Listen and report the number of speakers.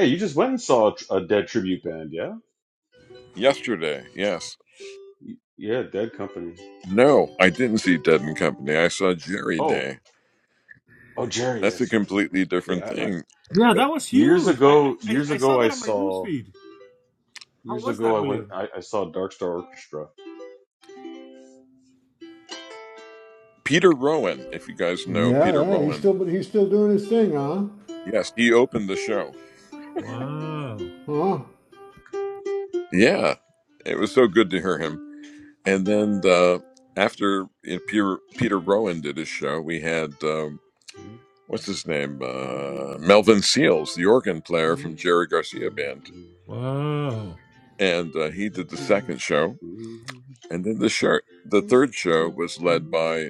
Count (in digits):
4